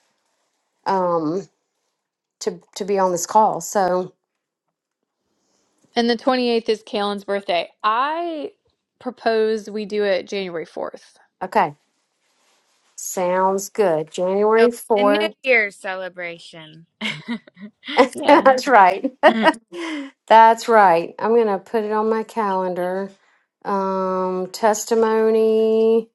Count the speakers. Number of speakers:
three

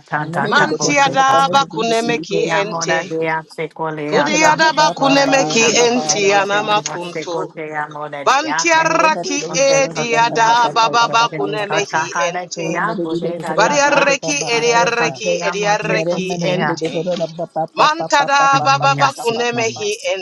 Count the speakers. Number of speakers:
three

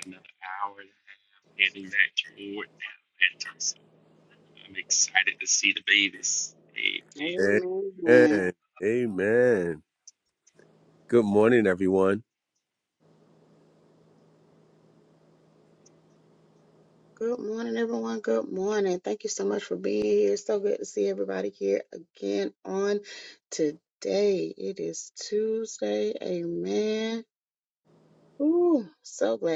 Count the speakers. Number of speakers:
three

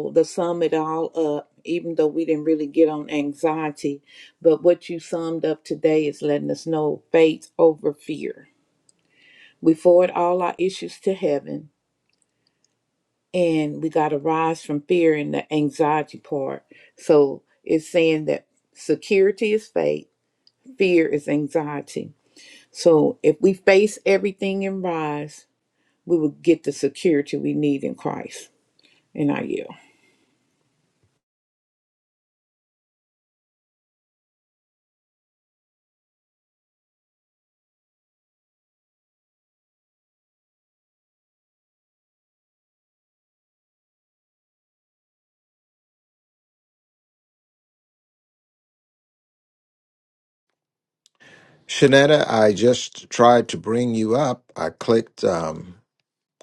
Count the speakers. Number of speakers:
two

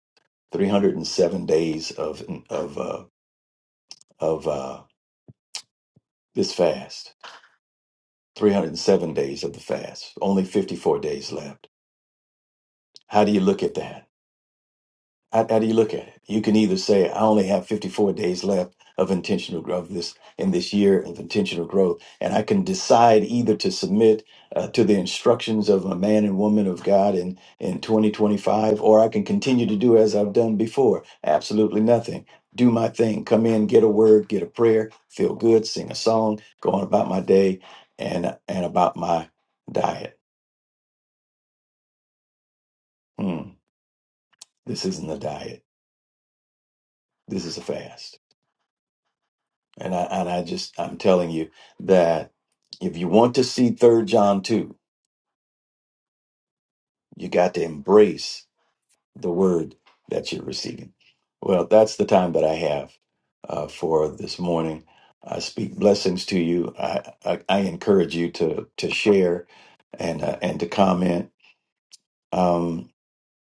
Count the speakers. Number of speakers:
one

